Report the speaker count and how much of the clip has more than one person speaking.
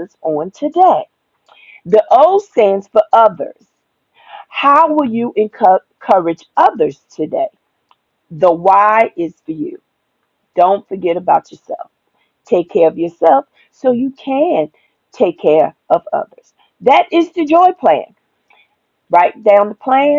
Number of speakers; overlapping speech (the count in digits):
1, no overlap